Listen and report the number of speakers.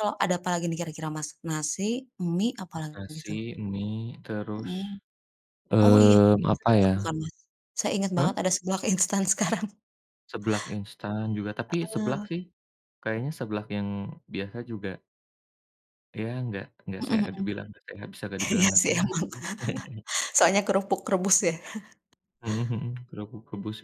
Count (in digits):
2